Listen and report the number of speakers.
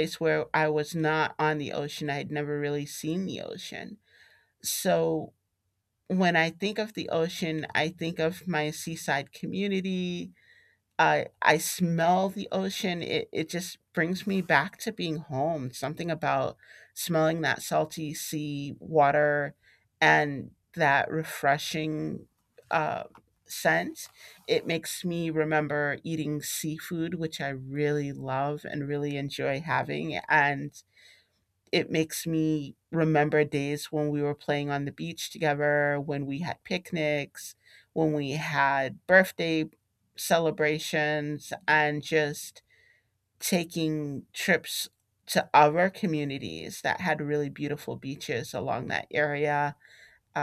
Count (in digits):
1